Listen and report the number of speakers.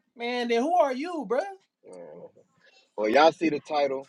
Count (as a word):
two